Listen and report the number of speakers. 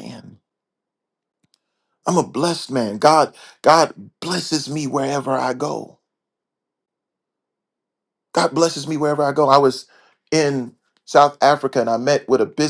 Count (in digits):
1